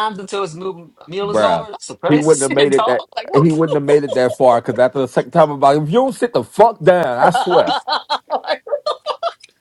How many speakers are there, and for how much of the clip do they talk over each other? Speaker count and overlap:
two, about 20%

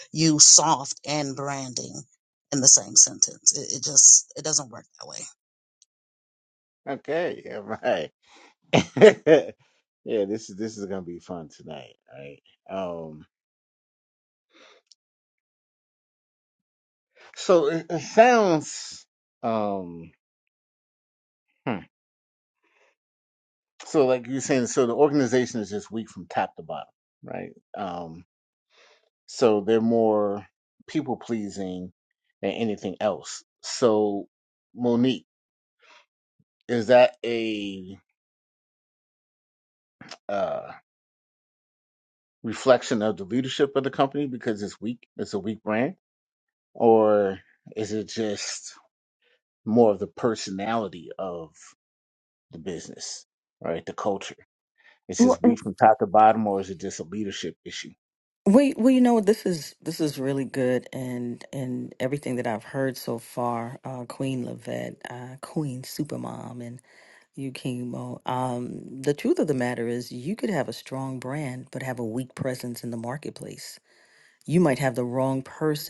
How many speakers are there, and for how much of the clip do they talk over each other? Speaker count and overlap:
three, no overlap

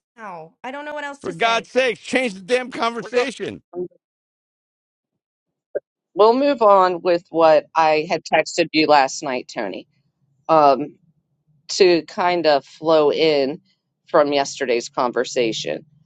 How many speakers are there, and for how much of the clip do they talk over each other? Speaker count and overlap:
three, about 4%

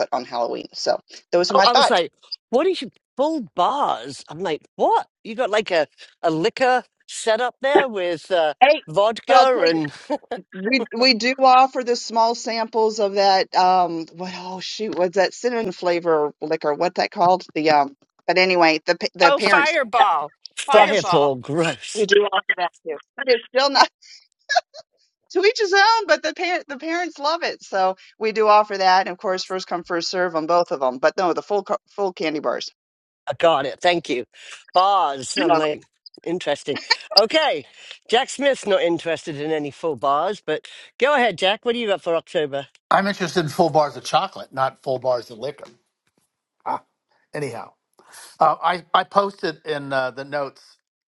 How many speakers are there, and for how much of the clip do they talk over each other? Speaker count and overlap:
four, about 4%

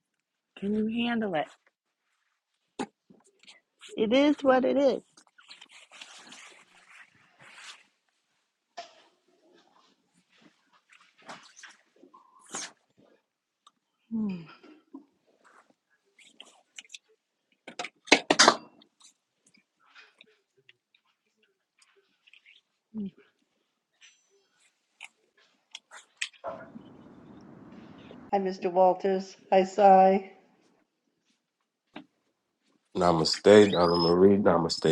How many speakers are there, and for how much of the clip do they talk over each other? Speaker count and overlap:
three, no overlap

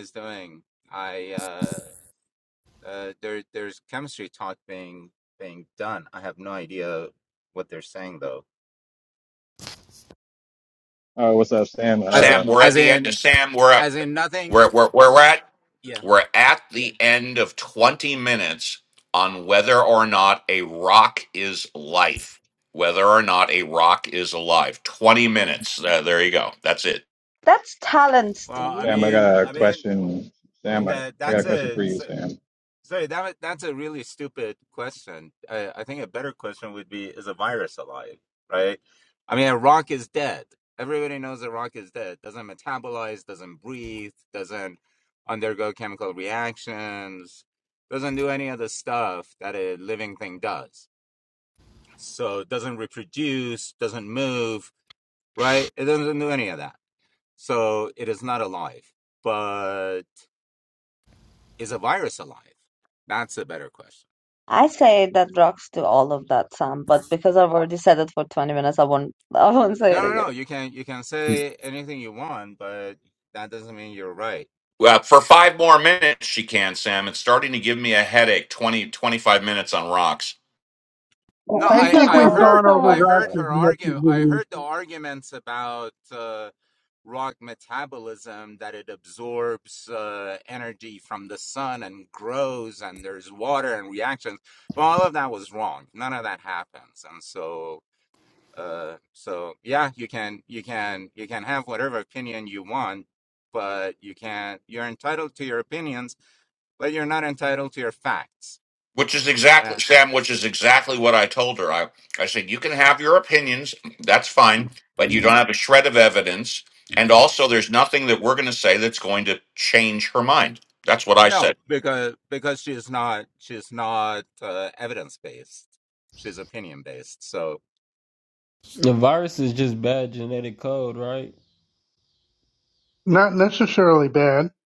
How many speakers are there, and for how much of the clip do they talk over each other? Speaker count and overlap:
six, about 5%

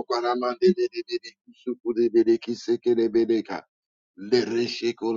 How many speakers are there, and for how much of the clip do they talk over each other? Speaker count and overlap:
one, no overlap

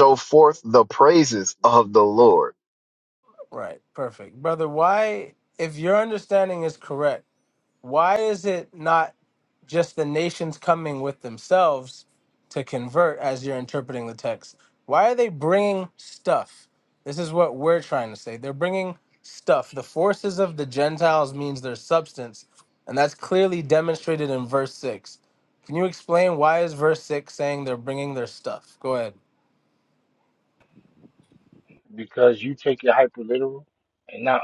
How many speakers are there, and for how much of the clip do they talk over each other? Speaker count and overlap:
three, no overlap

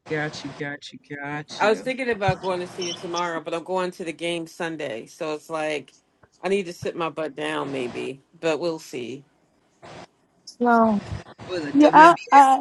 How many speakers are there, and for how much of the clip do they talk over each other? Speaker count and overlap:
three, about 5%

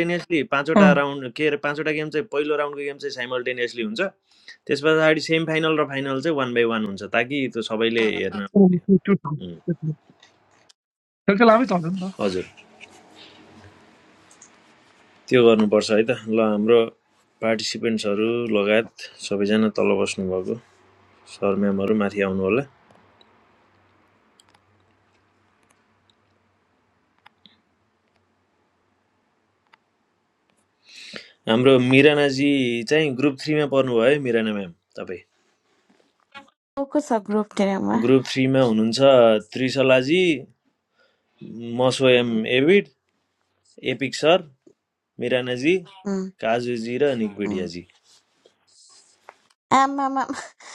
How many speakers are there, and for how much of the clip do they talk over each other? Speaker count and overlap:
three, about 1%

